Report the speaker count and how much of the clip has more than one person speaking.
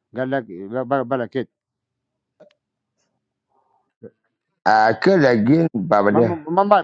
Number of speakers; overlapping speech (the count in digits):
2, about 3%